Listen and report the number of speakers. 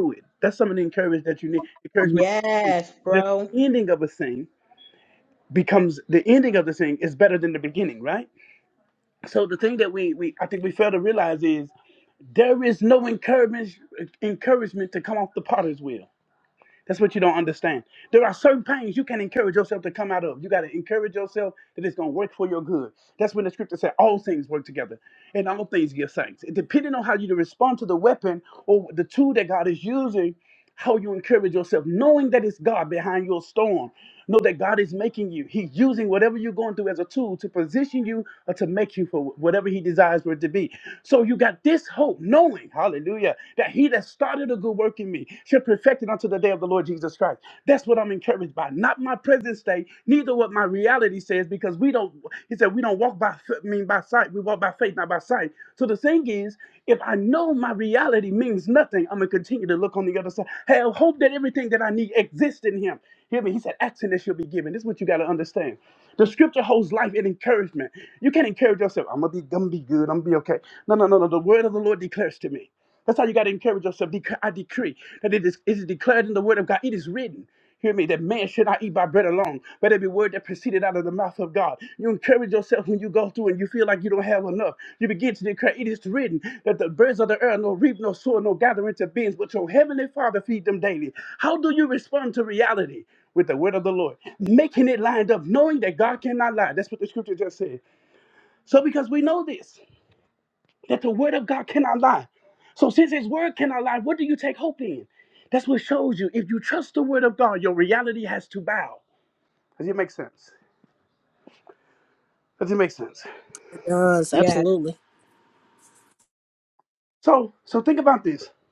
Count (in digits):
3